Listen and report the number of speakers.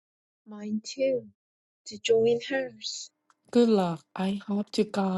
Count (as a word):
two